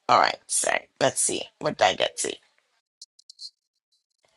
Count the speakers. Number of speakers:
1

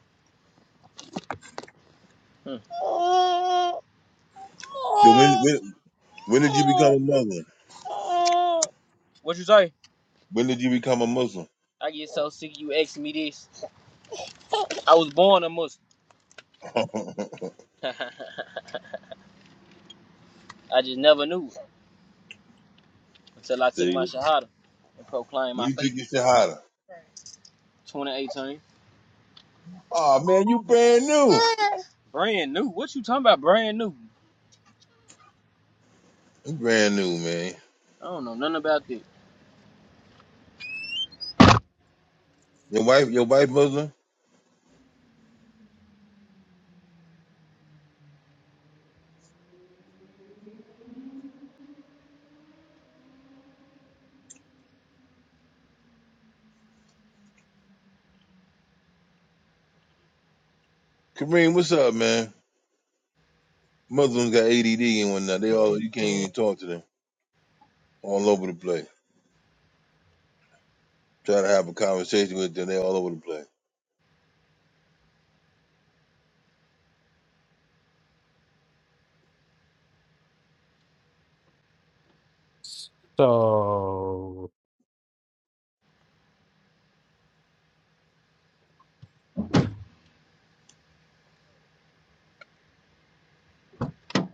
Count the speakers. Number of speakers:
3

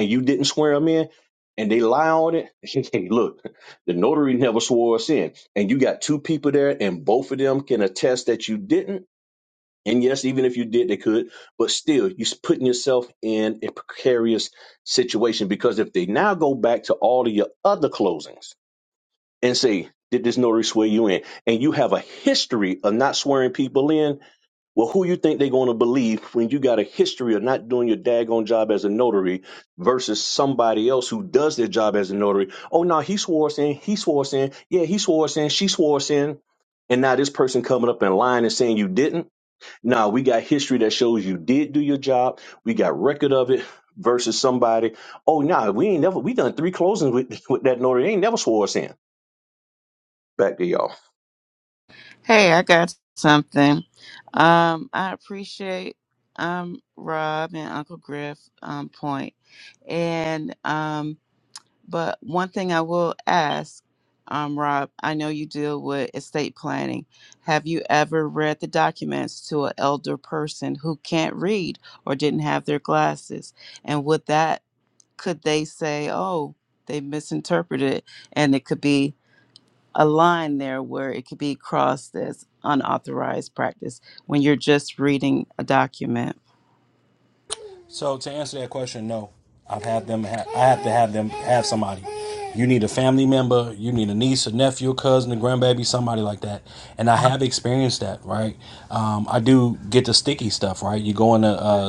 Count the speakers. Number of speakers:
3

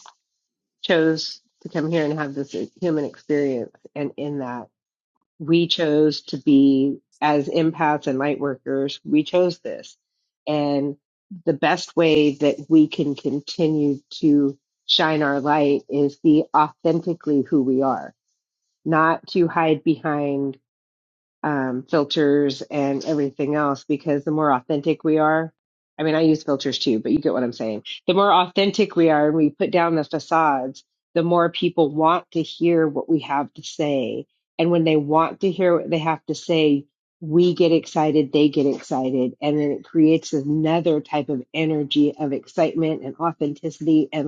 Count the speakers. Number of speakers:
1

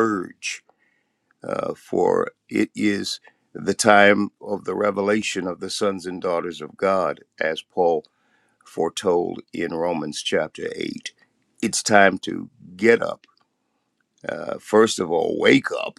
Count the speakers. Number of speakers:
1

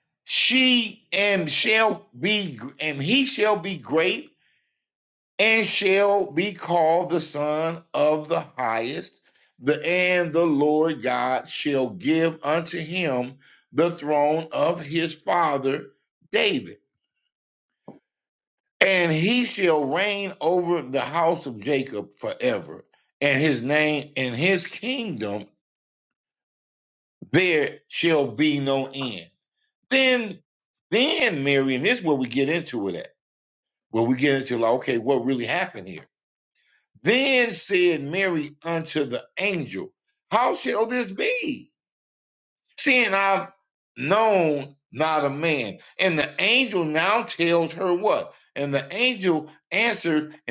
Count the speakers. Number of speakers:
1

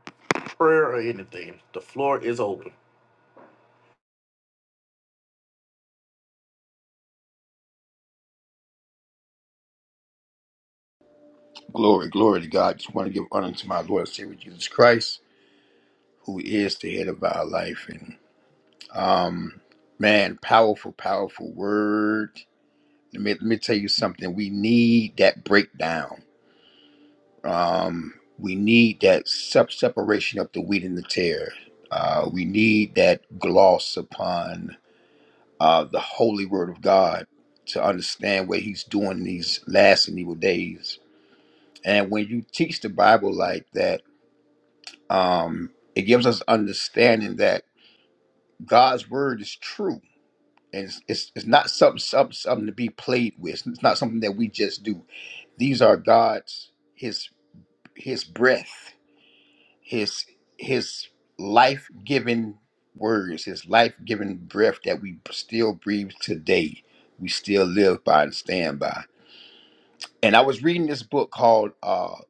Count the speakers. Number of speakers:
2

